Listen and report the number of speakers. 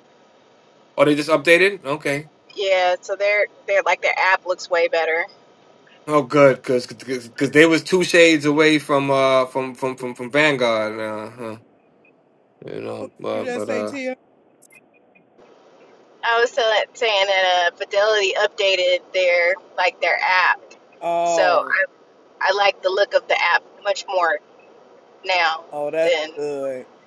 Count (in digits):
3